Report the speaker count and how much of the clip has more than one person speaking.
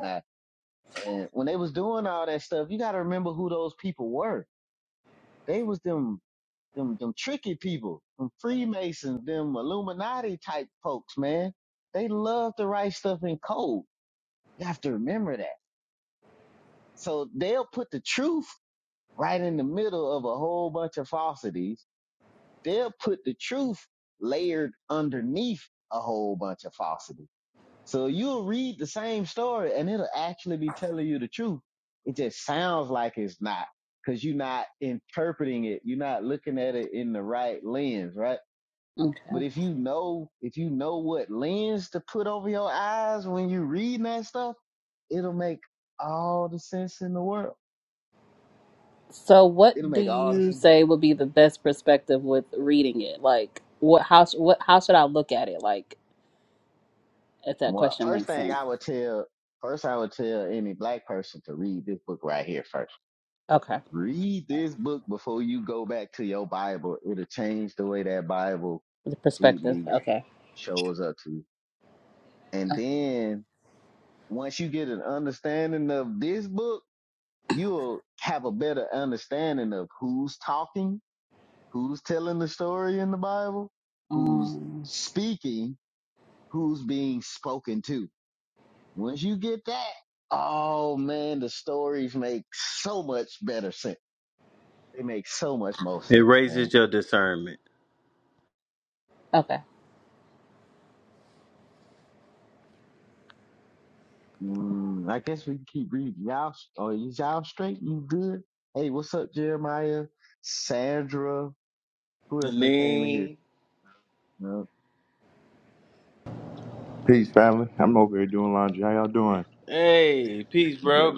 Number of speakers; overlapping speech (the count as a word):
four, about 4%